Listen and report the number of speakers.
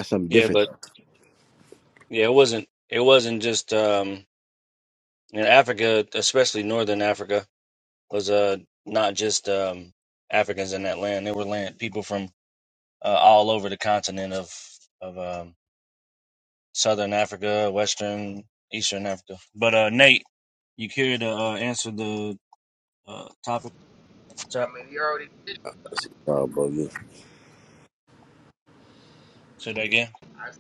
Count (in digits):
3